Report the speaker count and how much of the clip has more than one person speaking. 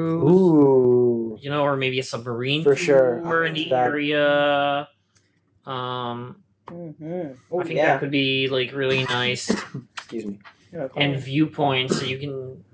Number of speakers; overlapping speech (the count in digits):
3, about 18%